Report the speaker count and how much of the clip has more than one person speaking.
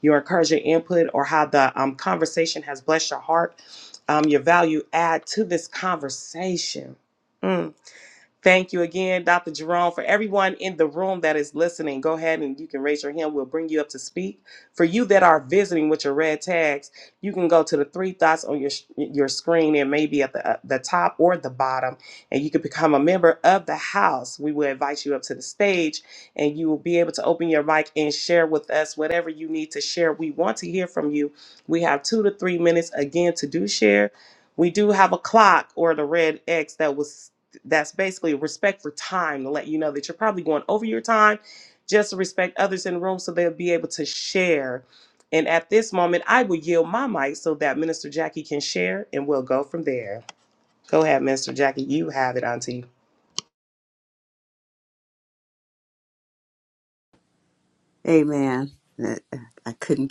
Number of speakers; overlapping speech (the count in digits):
2, no overlap